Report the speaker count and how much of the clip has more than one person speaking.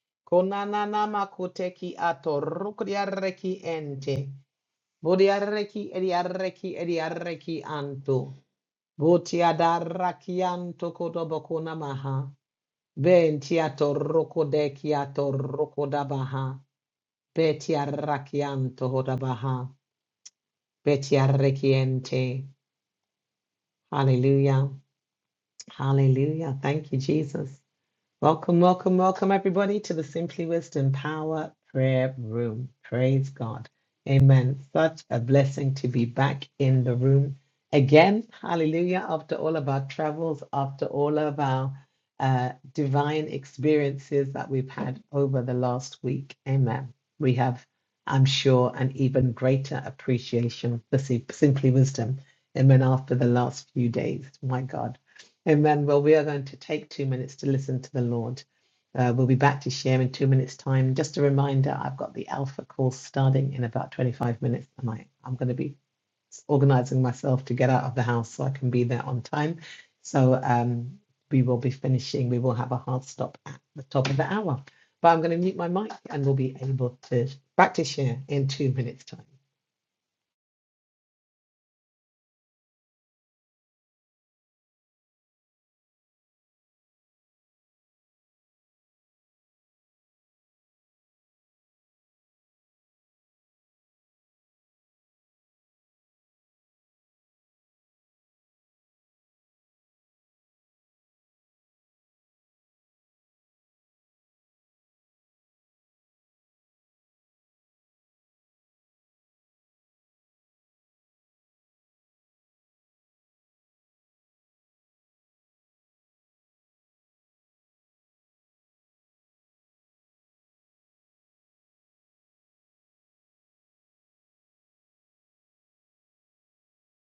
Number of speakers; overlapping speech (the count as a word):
one, no overlap